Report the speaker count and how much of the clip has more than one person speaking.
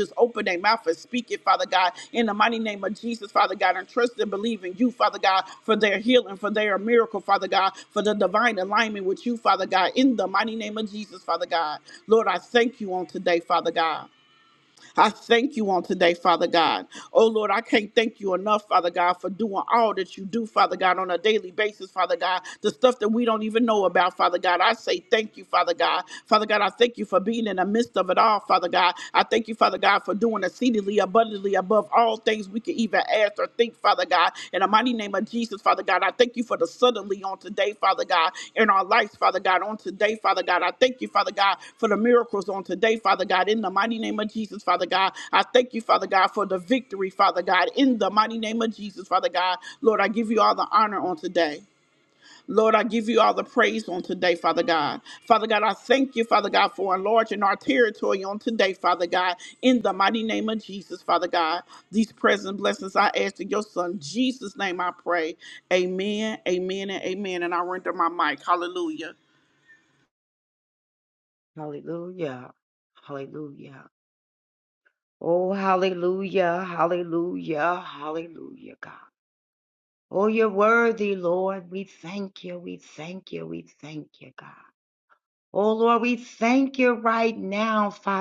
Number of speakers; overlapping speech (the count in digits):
2, no overlap